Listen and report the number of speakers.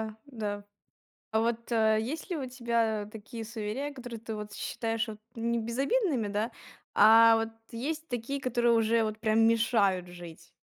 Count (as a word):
one